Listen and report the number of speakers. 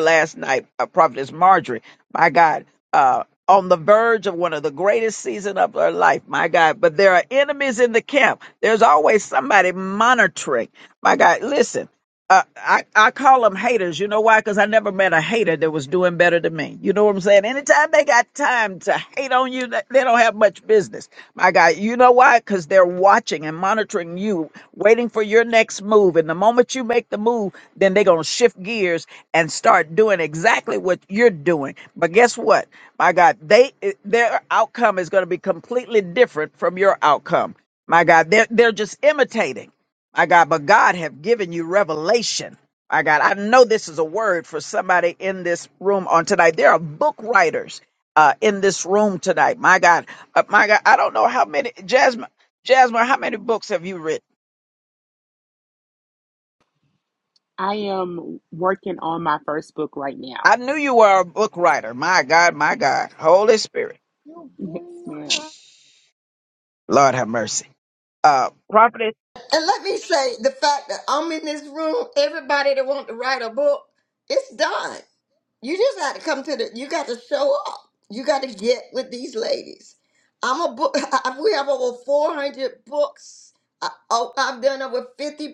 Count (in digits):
3